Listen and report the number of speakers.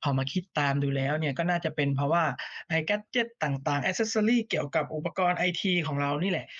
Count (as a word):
one